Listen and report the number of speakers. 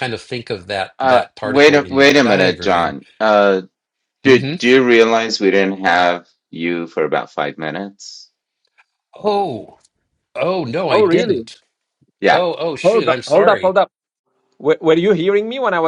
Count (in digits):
3